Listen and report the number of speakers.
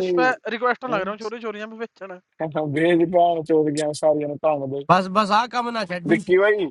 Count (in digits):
3